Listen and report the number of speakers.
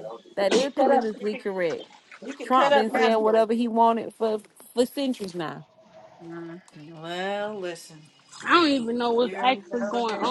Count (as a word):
three